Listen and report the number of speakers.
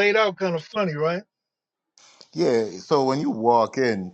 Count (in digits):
2